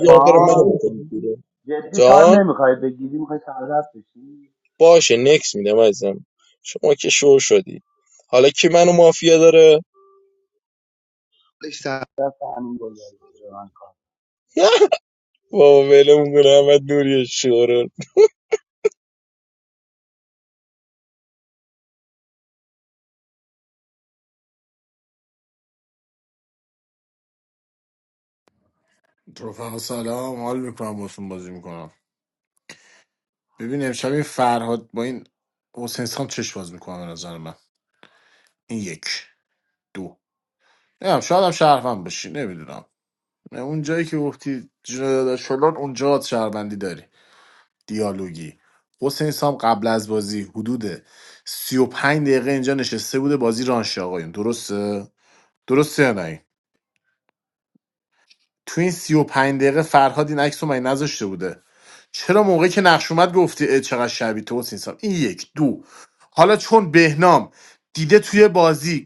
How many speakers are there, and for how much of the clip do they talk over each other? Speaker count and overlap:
3, about 2%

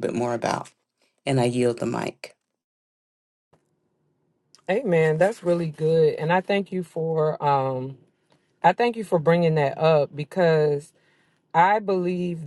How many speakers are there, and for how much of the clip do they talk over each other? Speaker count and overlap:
2, no overlap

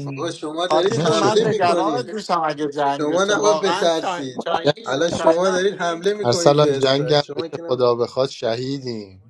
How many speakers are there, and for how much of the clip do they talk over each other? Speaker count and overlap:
3, about 65%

